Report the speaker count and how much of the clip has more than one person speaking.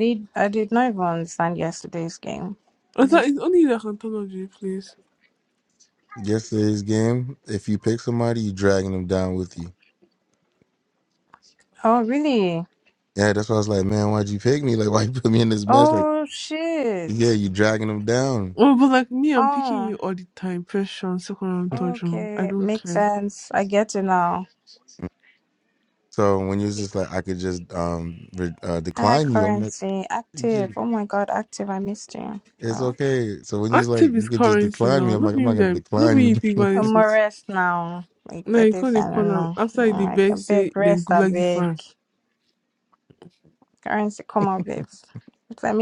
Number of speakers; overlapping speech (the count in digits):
3, about 22%